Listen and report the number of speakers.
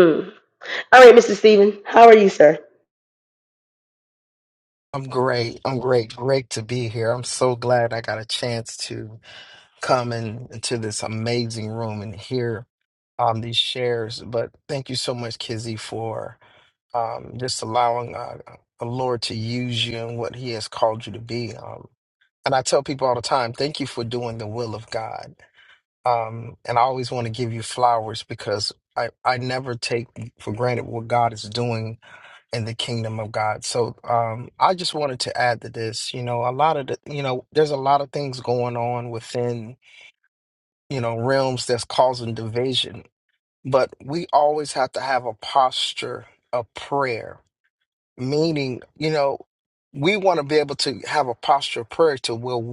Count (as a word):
two